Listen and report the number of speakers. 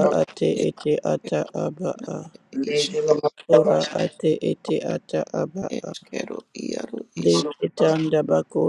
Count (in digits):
3